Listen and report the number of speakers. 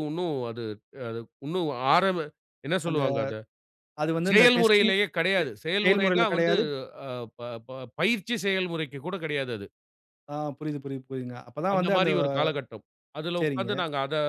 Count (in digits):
2